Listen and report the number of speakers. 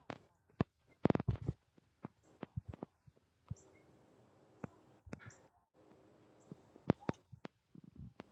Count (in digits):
0